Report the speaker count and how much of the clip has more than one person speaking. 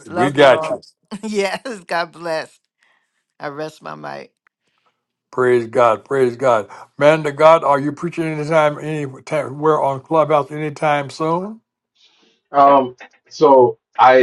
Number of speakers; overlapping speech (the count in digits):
3, about 5%